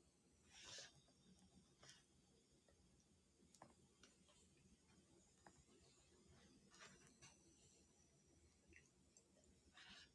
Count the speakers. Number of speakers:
0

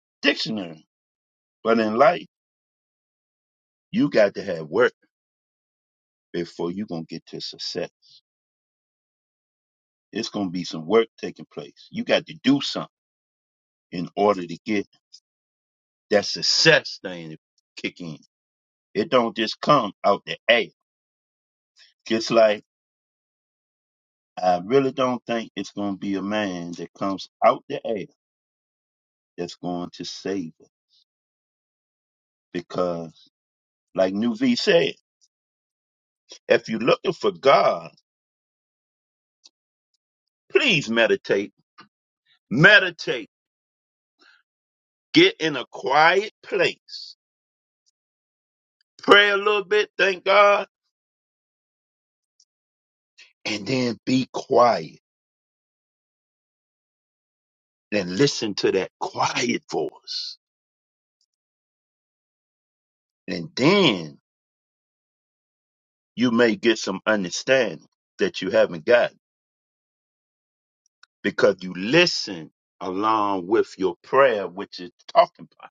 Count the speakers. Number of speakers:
1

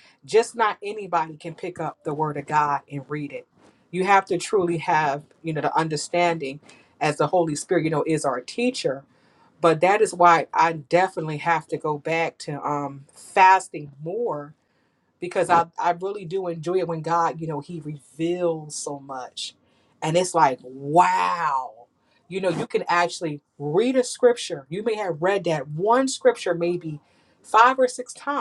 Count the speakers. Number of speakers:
1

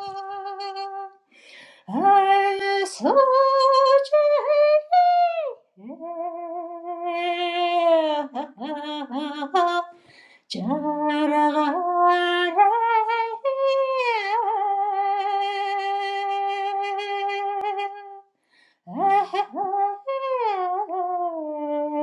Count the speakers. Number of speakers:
1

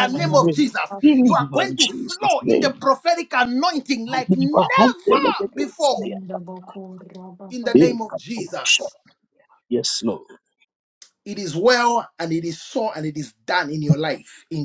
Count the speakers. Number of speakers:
3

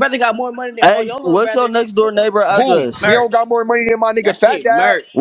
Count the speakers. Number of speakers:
3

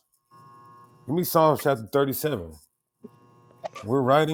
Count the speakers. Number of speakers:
1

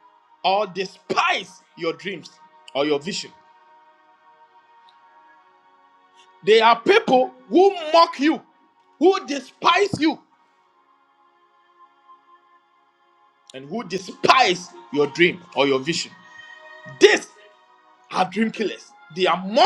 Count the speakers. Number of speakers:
1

